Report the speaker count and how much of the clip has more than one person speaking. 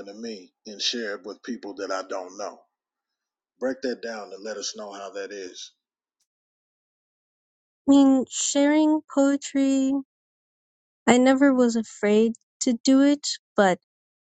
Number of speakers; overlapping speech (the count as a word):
two, no overlap